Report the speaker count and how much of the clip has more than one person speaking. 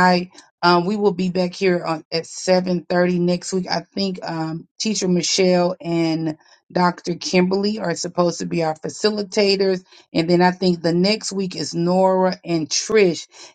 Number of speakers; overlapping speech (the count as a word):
one, no overlap